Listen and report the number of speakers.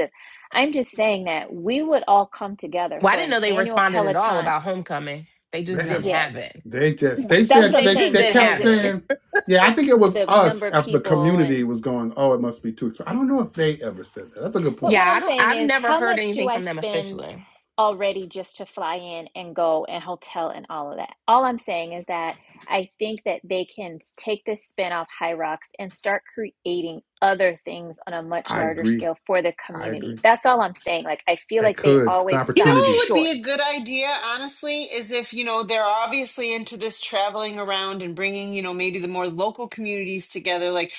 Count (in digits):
4